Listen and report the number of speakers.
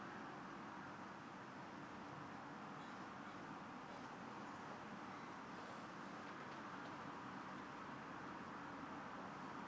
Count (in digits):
0